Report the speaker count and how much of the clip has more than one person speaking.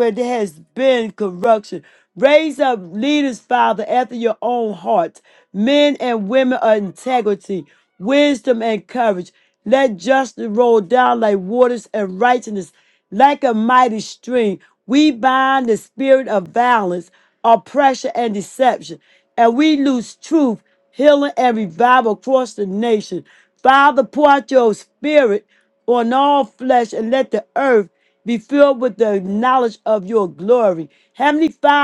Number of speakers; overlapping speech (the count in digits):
1, no overlap